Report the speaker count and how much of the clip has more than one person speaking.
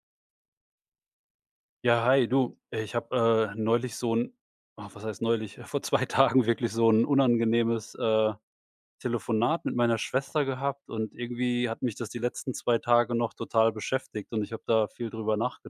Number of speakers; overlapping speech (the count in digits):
1, no overlap